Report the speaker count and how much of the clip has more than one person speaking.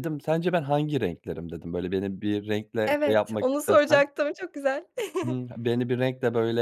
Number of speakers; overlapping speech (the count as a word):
two, about 17%